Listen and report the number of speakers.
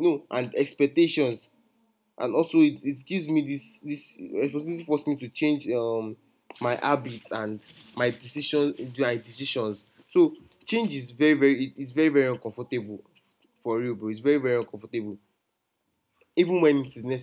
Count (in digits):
1